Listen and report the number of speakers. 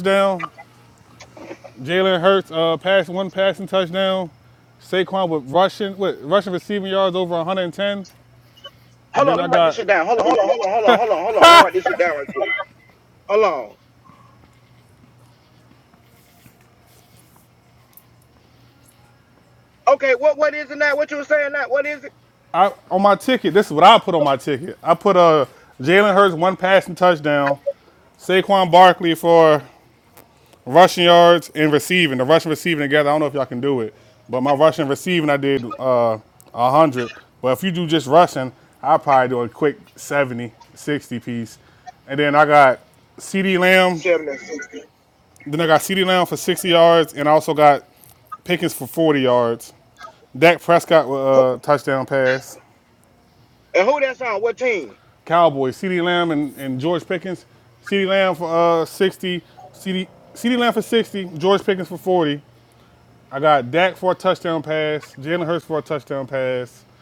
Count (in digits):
2